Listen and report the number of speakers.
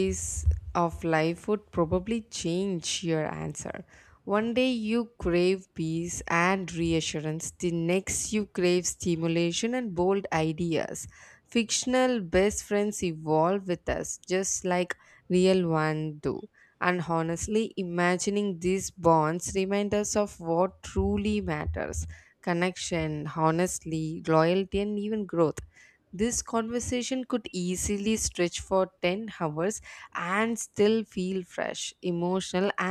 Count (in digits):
1